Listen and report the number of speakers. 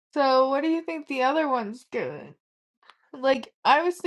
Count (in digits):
1